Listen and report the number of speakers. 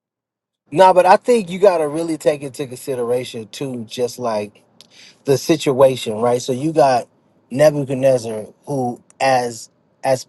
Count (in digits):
1